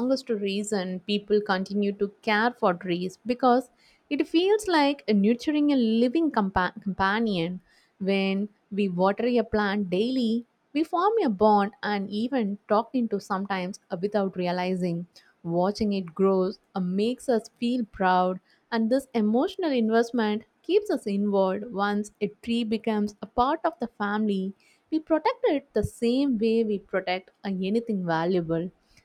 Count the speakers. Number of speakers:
1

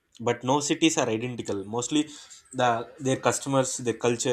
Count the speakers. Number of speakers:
1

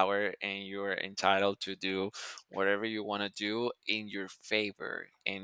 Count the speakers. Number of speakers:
1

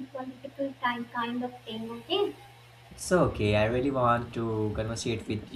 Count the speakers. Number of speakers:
2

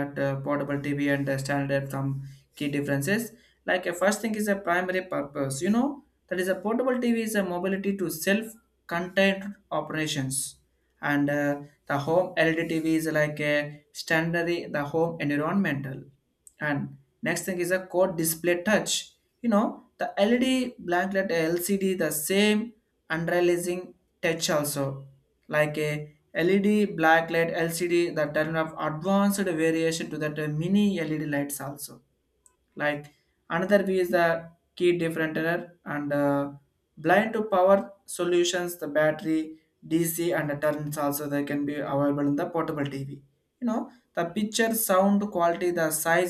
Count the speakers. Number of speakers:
1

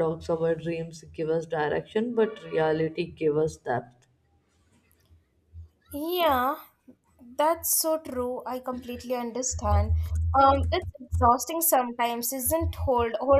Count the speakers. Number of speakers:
2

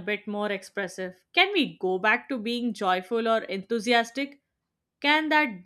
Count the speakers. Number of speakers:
1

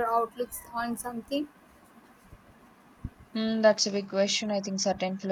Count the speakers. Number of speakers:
2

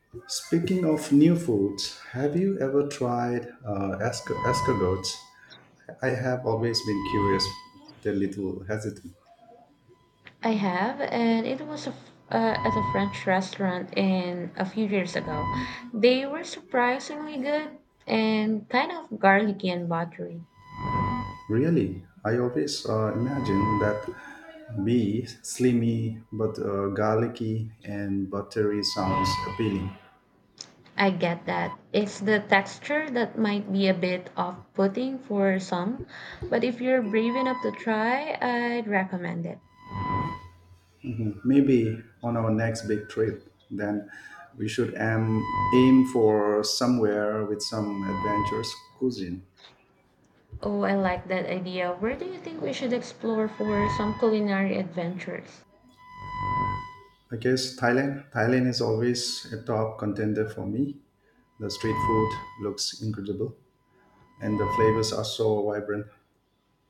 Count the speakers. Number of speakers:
2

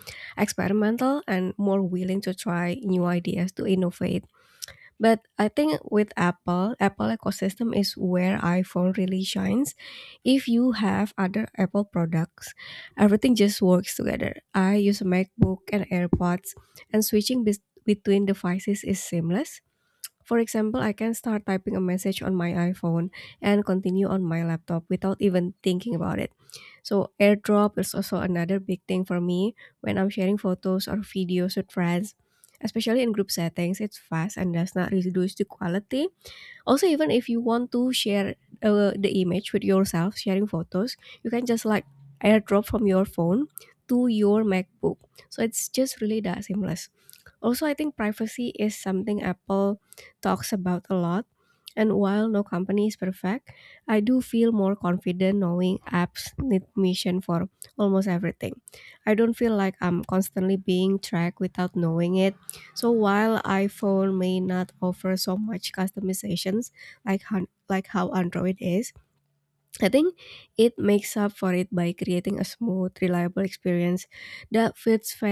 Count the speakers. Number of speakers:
1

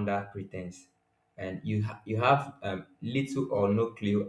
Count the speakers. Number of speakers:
1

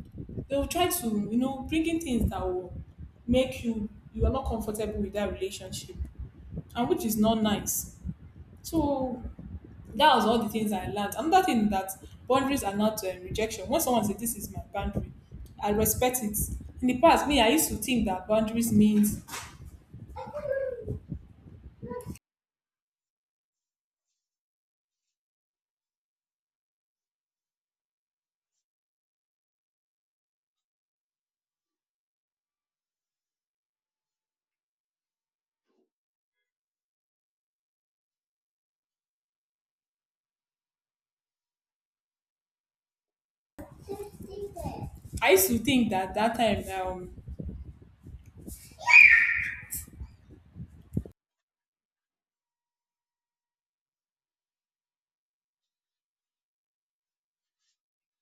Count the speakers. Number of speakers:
1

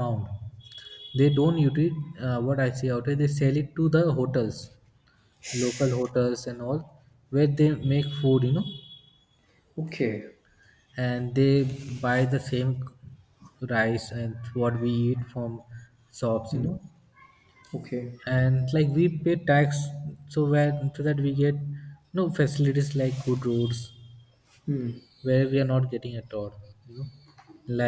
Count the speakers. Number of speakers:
2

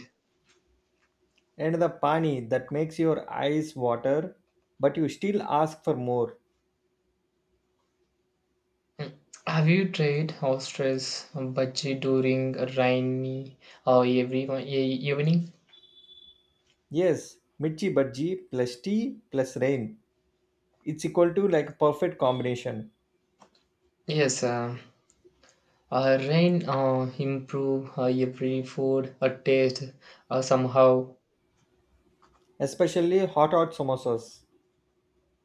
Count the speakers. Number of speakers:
2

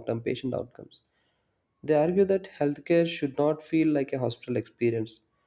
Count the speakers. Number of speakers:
1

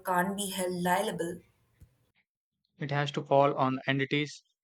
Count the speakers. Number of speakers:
2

